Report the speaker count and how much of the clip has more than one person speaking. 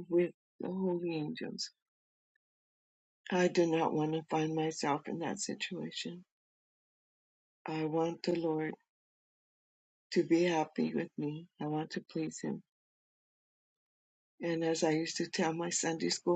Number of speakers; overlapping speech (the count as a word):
one, no overlap